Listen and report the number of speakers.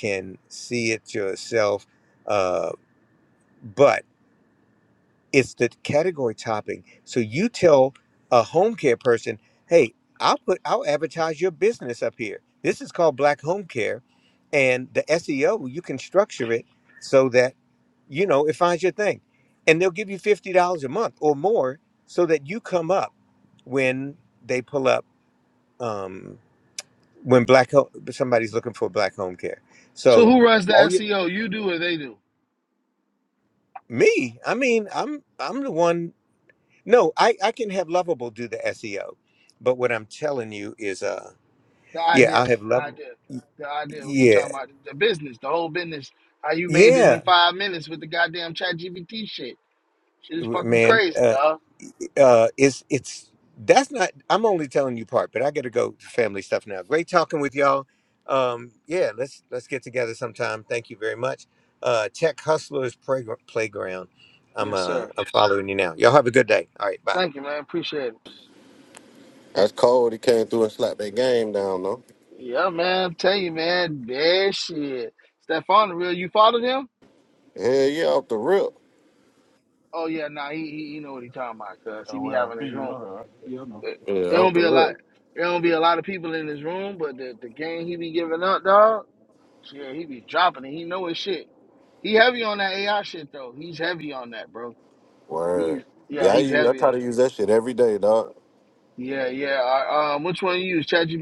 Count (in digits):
3